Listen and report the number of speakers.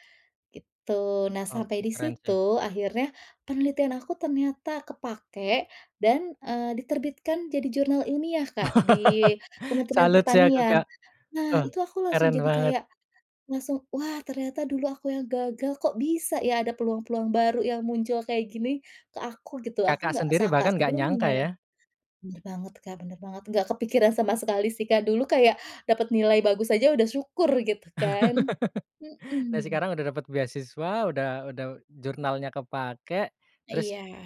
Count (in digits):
2